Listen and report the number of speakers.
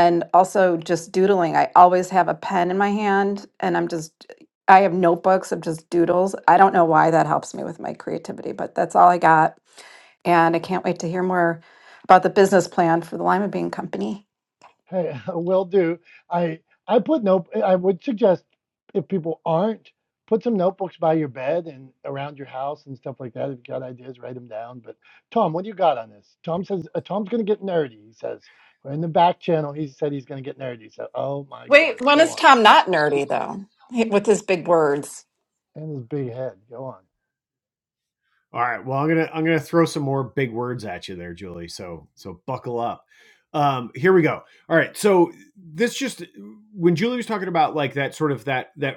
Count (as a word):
three